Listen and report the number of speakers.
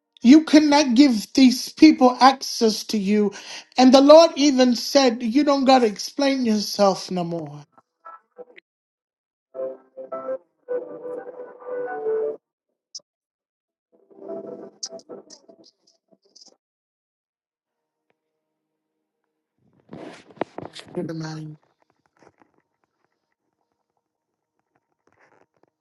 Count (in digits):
1